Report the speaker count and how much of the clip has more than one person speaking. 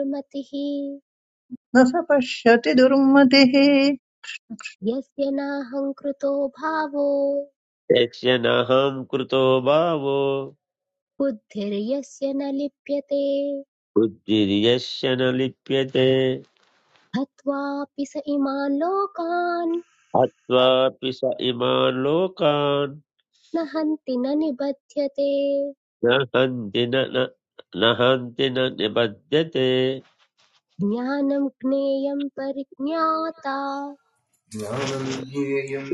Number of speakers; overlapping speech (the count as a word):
four, no overlap